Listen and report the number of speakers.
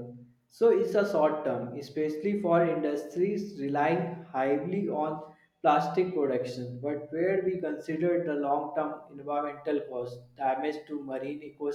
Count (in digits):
1